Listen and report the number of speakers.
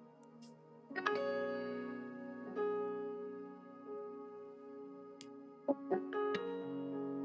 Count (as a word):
zero